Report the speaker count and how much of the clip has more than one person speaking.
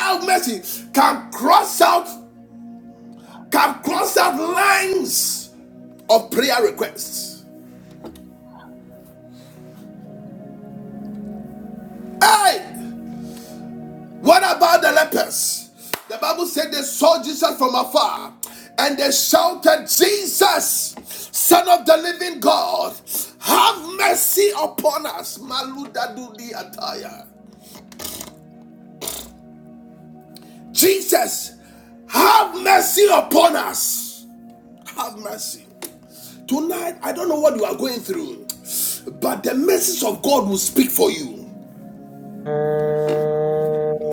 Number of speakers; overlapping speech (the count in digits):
2, no overlap